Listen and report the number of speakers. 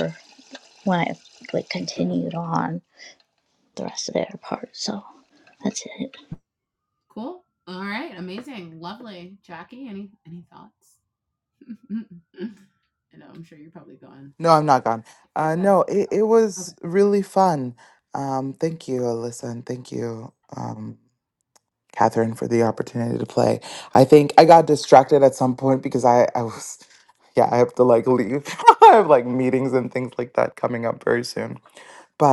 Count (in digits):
3